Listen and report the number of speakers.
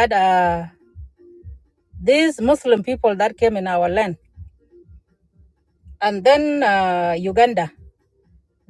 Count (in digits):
1